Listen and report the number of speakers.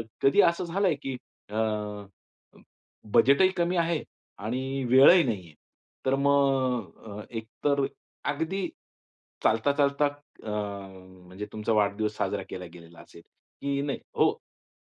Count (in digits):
1